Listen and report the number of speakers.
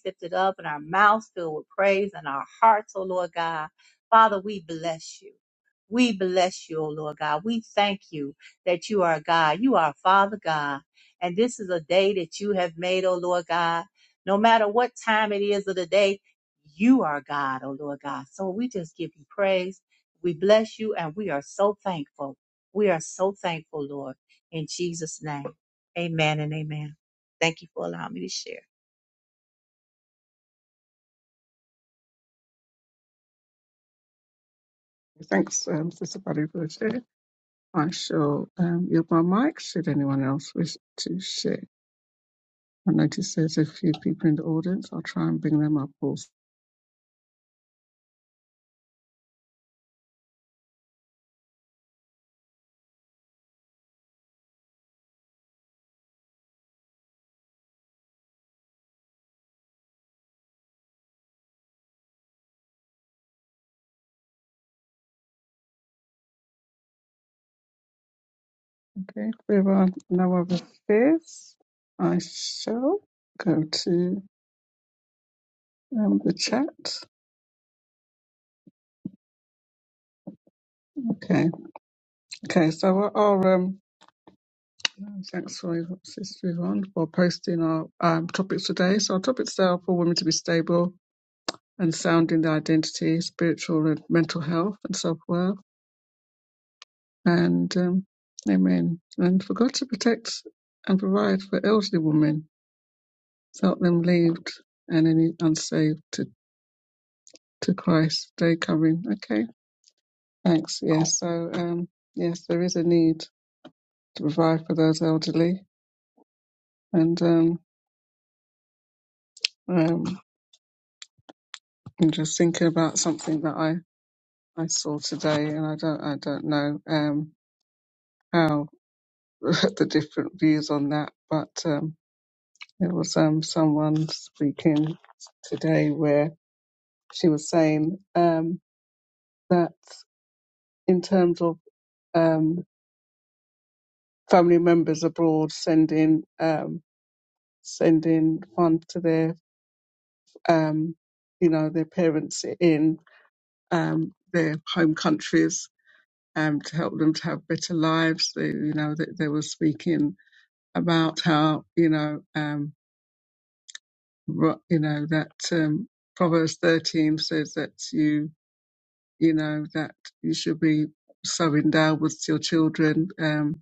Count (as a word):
two